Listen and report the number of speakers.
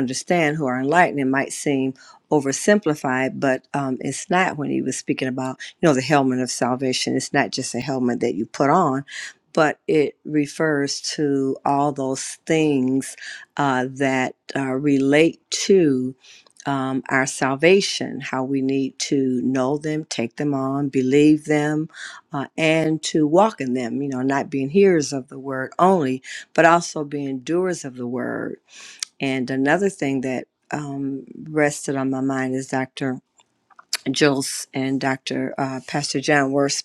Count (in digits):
1